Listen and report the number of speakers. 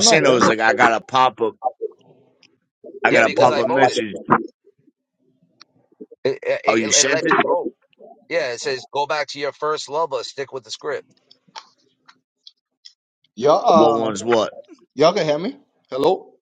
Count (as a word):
three